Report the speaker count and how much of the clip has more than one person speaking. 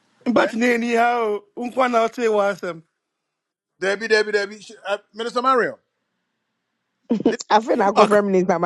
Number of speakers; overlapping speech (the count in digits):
3, about 2%